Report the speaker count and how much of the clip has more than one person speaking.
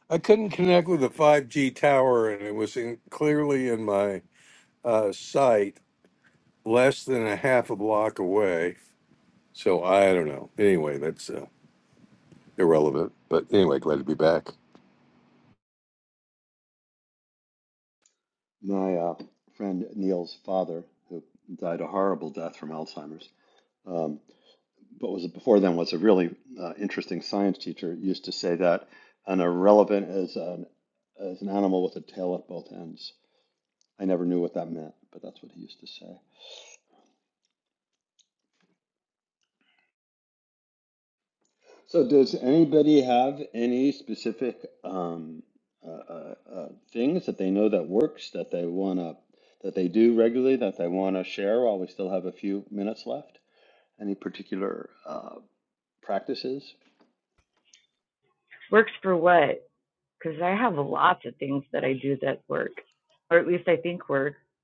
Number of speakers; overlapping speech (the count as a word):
three, no overlap